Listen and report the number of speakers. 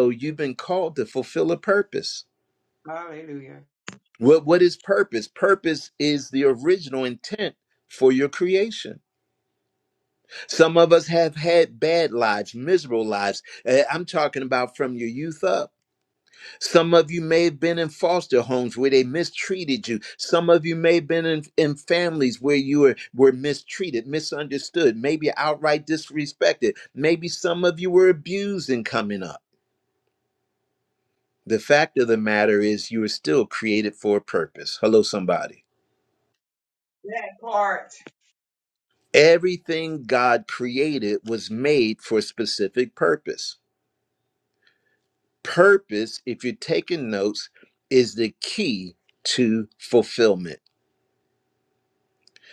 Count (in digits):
2